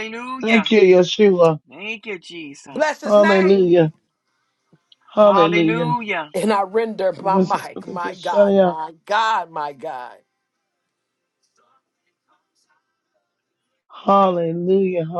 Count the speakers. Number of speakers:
3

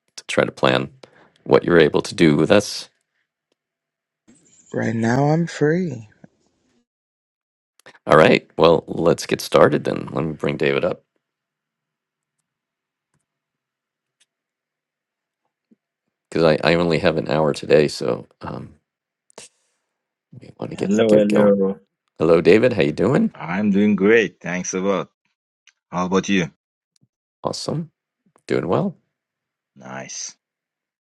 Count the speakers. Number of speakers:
3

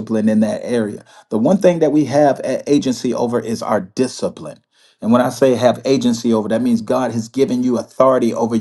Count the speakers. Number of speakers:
1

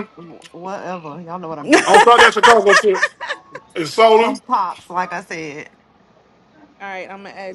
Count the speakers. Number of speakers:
3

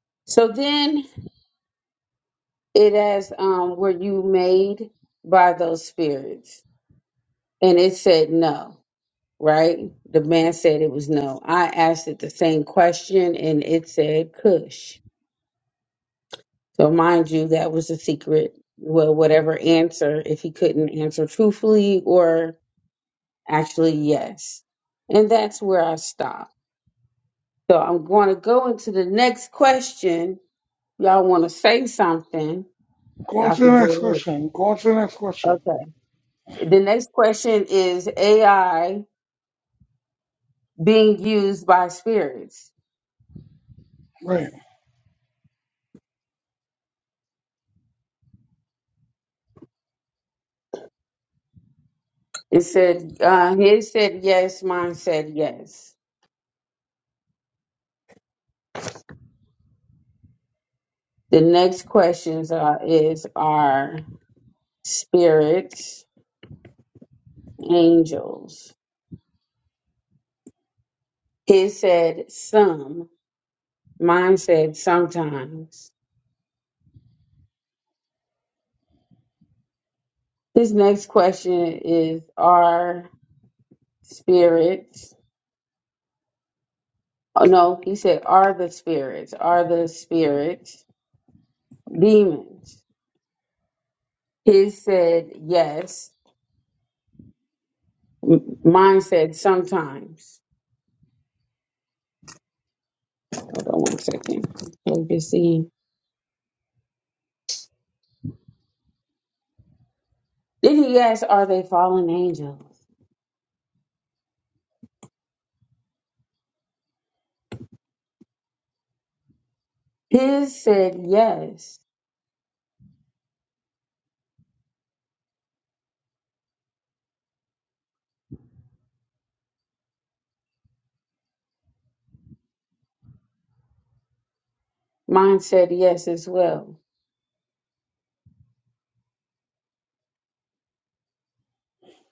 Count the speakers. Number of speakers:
2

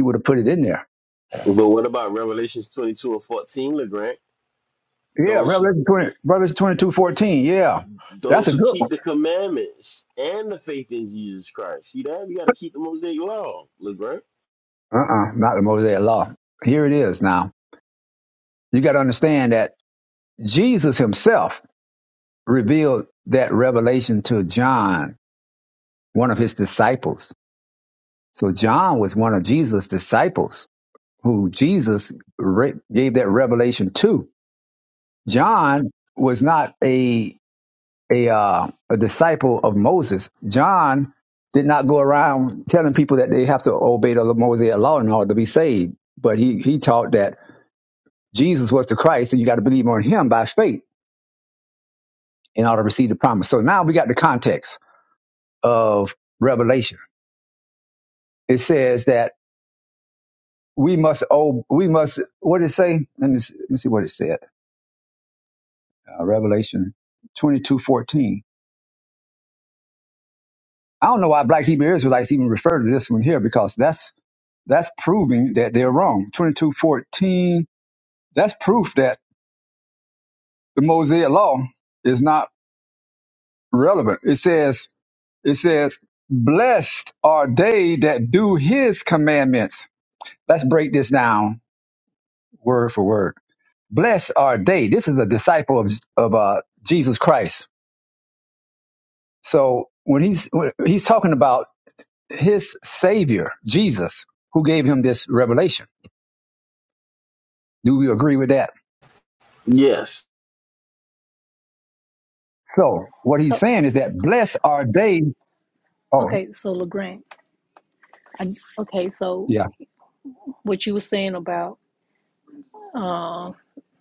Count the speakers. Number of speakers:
3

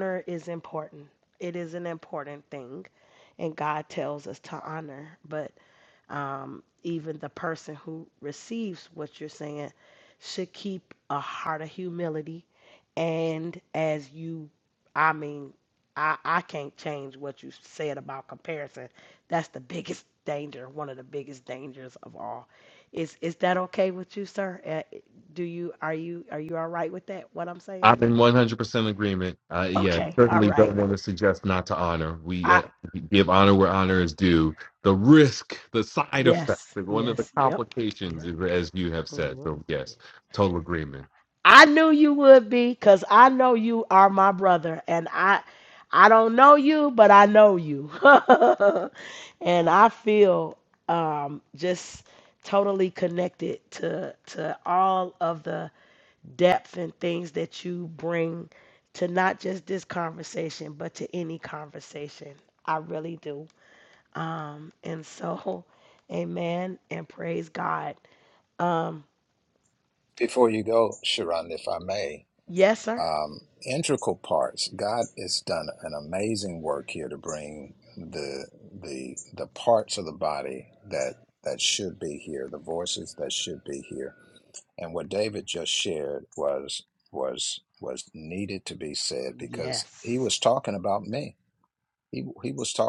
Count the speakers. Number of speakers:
3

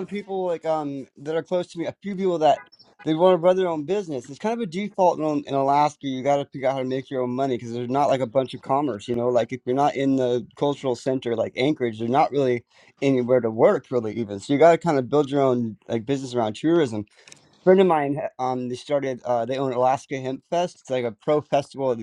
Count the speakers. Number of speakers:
1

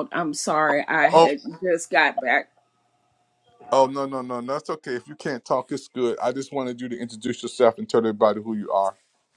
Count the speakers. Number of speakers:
2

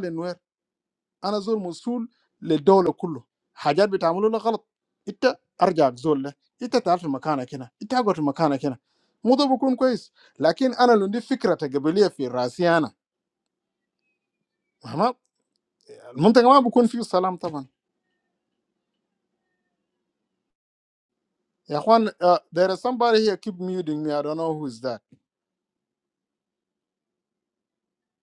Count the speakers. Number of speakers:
1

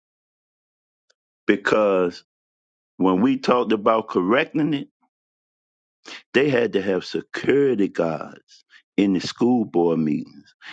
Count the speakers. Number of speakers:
1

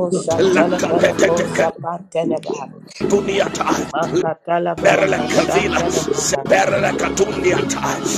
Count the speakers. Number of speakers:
3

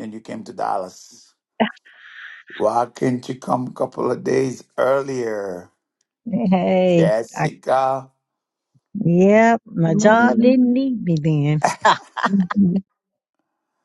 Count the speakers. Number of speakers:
3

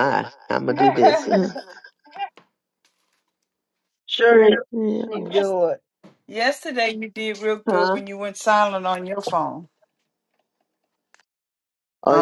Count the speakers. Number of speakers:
3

